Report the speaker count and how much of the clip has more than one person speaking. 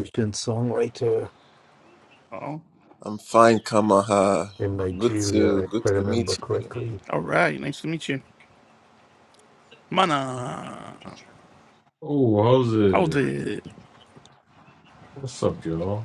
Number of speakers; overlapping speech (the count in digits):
4, about 12%